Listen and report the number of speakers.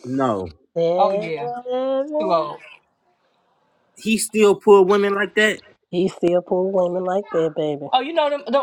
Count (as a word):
three